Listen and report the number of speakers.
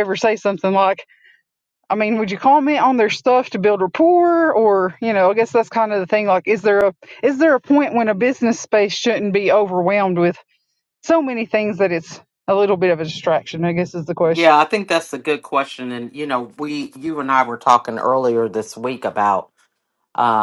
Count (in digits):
2